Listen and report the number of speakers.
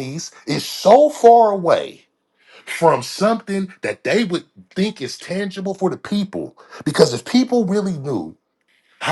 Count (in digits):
1